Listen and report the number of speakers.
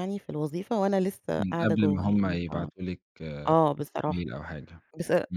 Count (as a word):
two